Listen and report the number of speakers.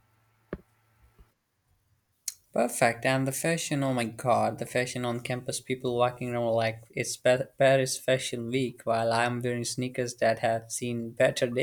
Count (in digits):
1